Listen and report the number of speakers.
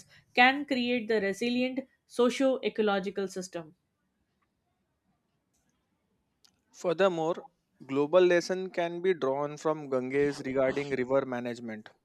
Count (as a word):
two